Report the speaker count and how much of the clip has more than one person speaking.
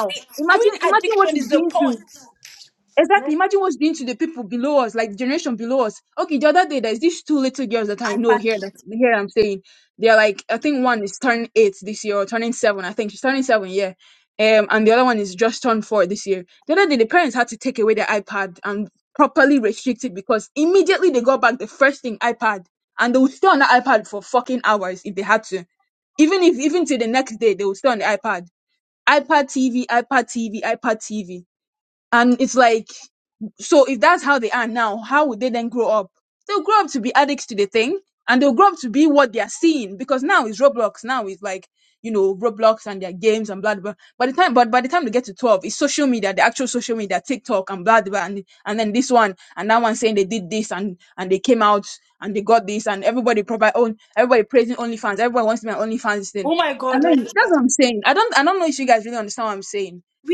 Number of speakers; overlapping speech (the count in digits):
2, about 6%